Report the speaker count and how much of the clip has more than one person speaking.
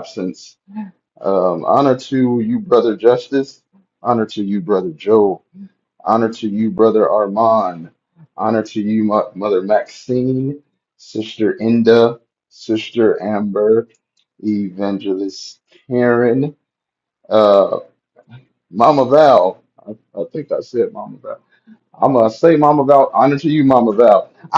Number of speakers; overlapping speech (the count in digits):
1, no overlap